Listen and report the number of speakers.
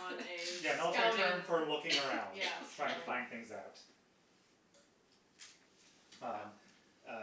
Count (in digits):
2